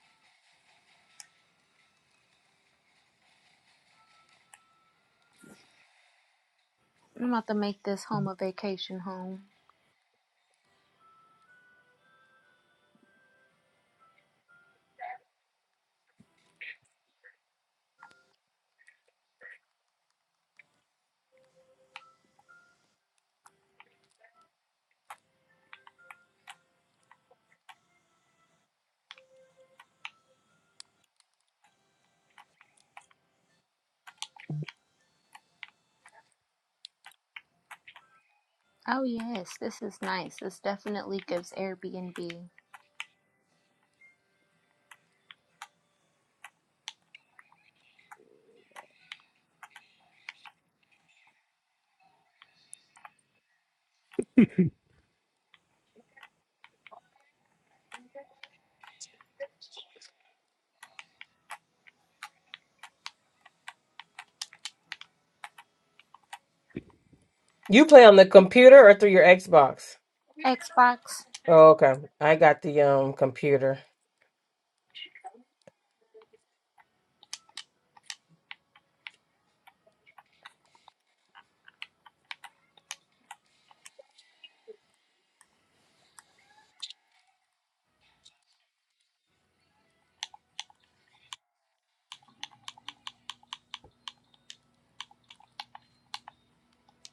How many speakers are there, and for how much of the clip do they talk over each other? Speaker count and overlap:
2, no overlap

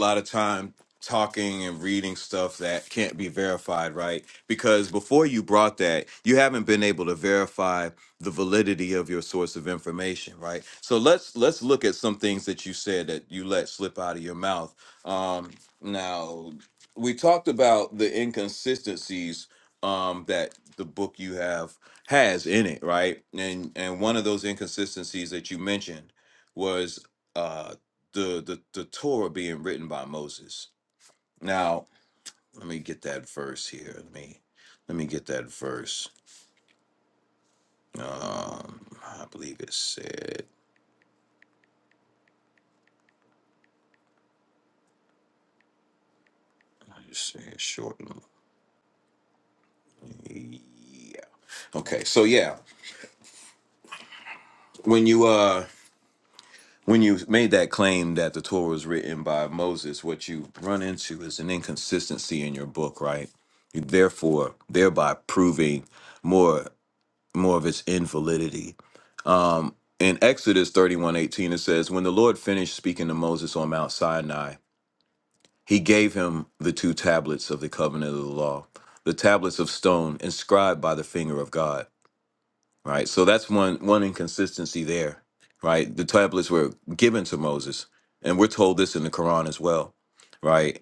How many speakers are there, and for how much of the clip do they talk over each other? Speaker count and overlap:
1, no overlap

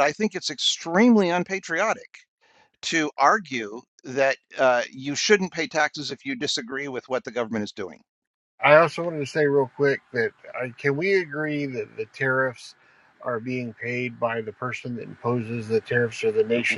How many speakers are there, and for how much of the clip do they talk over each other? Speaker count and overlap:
2, no overlap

